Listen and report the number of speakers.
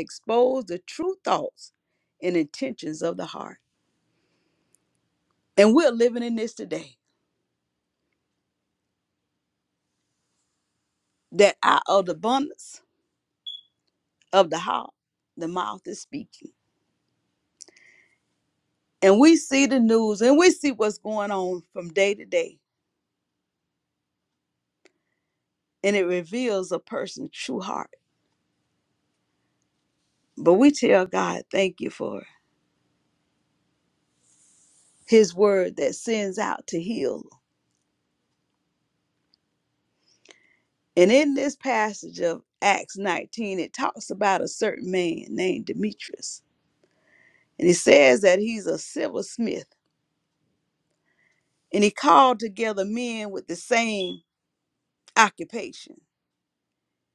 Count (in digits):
1